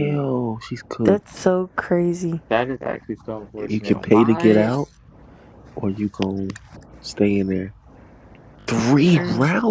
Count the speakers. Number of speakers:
3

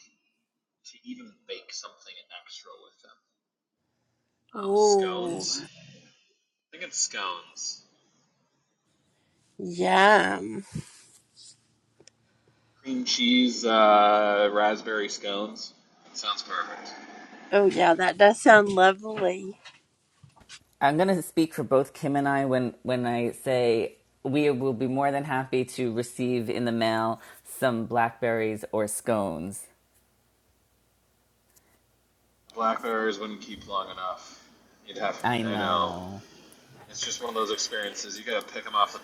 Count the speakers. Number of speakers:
3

